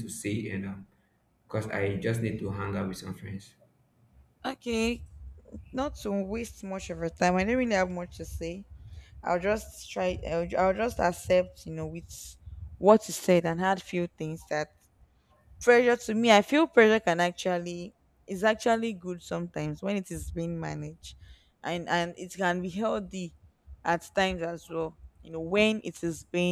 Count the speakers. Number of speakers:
2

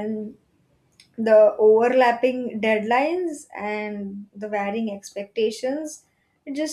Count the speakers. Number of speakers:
1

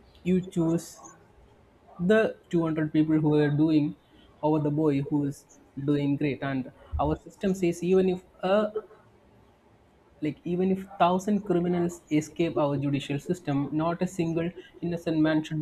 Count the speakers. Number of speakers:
1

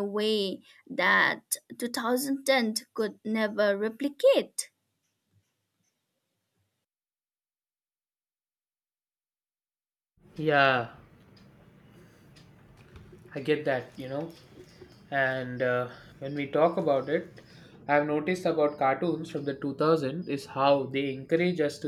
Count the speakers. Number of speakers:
2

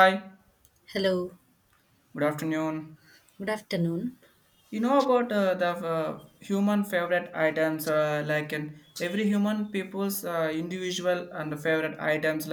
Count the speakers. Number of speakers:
2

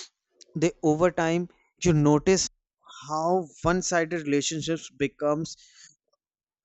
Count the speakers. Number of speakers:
1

